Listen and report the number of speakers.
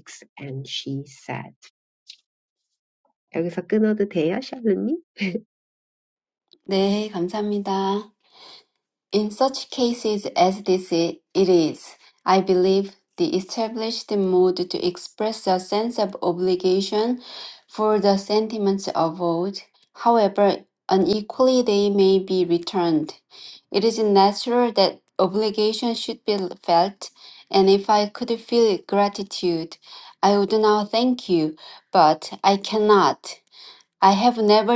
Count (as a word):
two